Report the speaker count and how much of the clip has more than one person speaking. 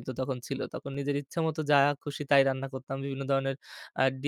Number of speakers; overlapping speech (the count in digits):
1, no overlap